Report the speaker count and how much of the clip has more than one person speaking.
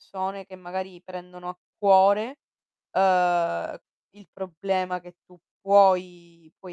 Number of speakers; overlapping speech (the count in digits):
1, no overlap